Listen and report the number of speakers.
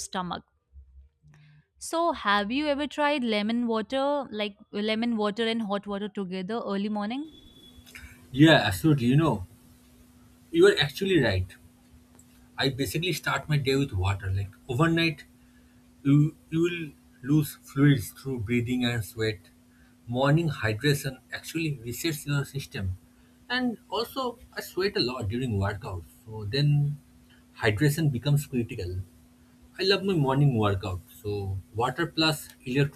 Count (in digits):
2